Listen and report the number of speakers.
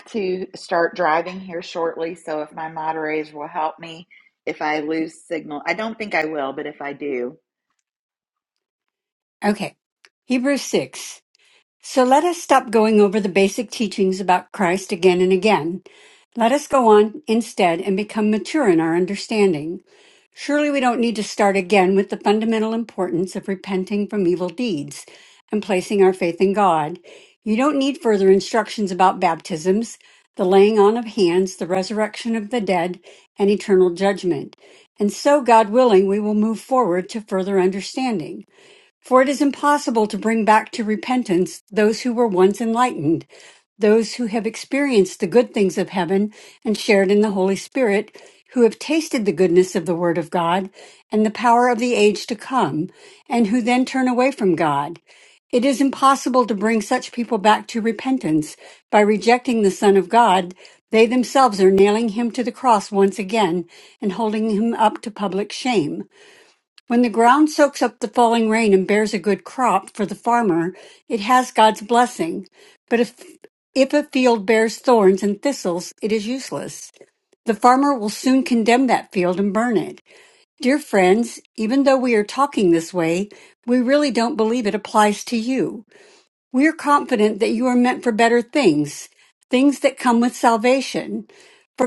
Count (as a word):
two